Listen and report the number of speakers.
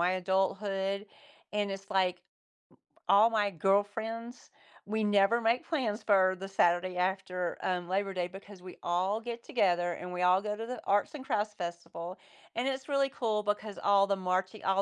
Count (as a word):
one